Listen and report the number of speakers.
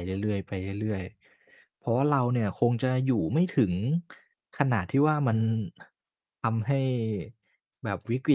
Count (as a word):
one